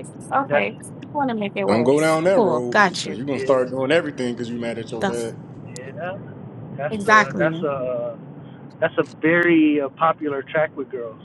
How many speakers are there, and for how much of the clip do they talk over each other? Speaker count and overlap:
3, about 23%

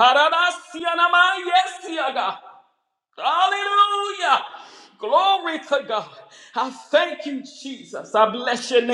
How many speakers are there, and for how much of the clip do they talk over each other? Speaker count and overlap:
1, no overlap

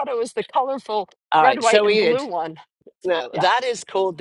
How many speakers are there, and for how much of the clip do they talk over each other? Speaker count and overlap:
2, about 23%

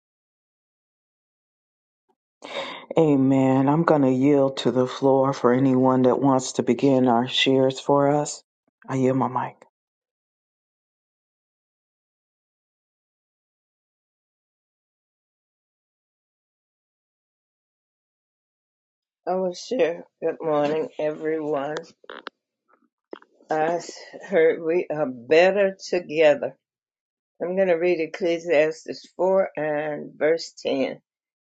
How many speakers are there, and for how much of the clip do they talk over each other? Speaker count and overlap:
2, no overlap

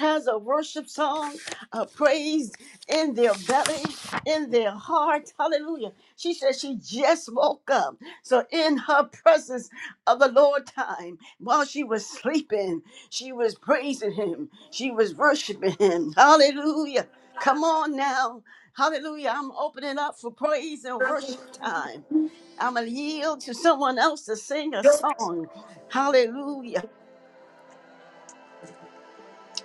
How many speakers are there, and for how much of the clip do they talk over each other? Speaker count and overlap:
1, no overlap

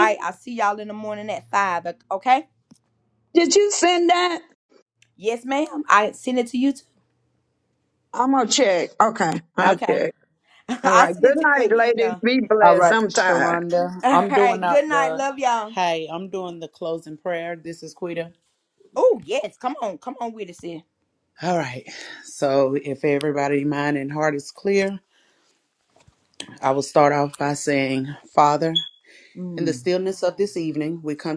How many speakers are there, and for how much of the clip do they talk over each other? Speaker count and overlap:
3, about 14%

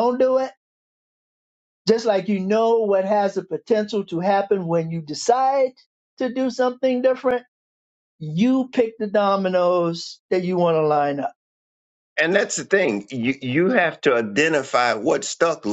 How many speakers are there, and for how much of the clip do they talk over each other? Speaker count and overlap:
2, no overlap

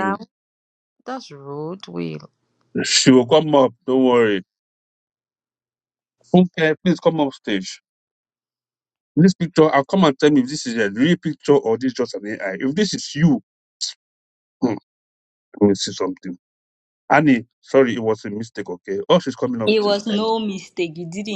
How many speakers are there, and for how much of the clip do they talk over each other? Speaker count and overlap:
3, about 4%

